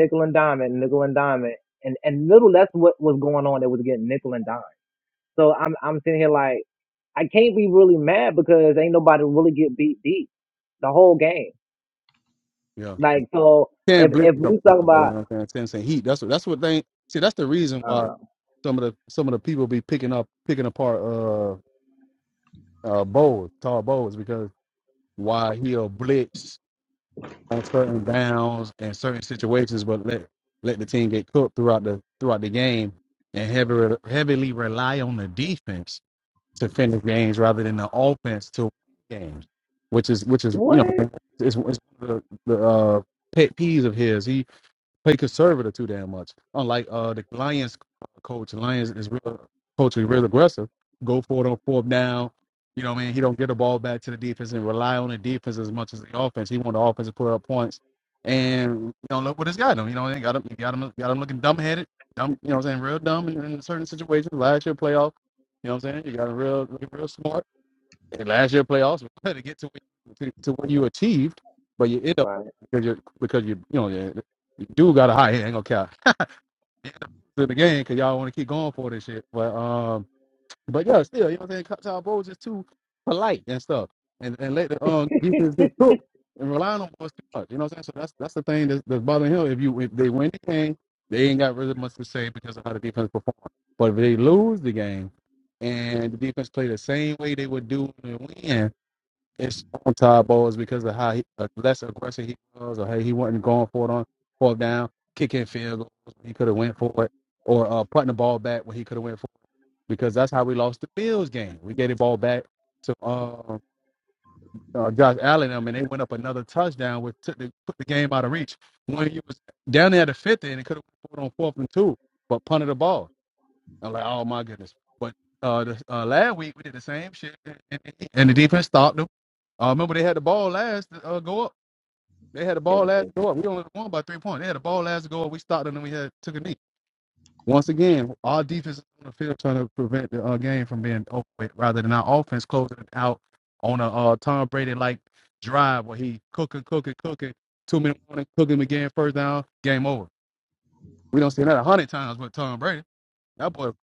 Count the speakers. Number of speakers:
2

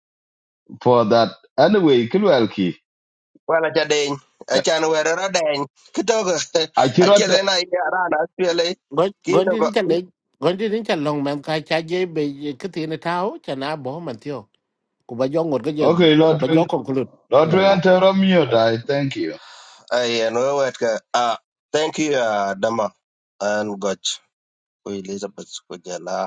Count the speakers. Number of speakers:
3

